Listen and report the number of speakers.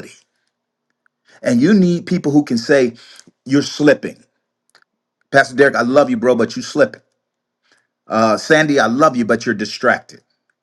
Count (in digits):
1